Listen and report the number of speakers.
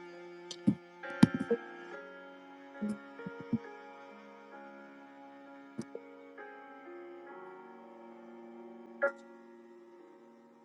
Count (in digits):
0